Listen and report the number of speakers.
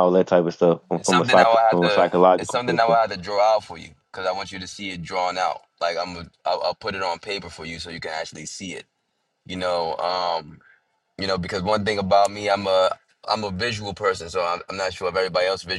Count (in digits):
2